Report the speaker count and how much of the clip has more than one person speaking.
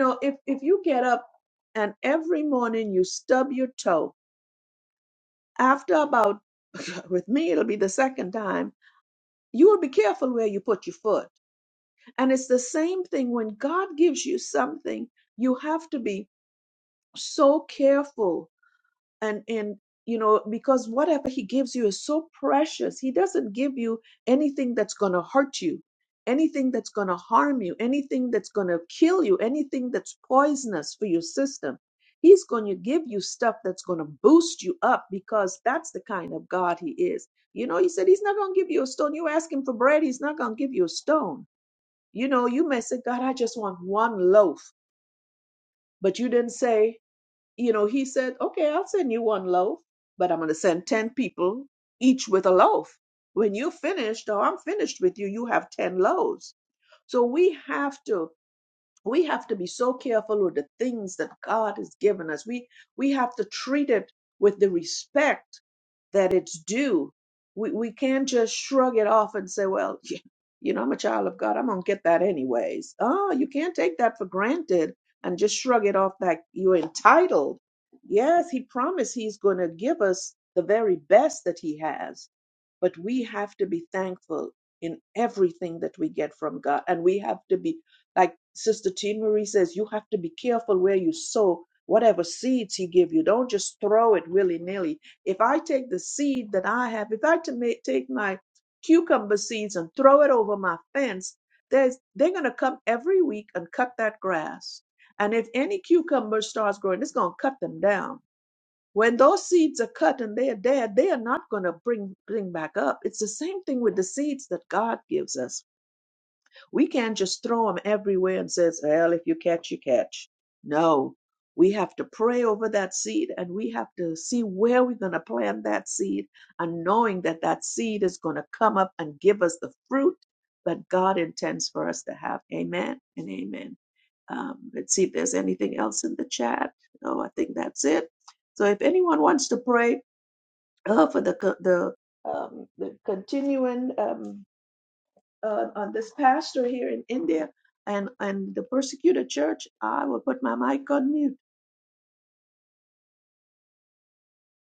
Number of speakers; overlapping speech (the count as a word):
one, no overlap